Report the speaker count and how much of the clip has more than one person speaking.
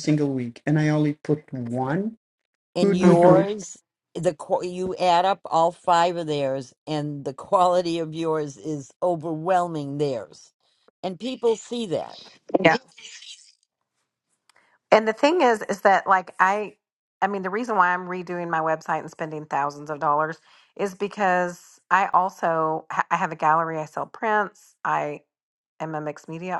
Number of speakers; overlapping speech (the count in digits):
3, about 2%